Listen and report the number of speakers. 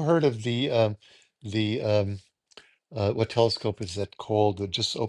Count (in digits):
1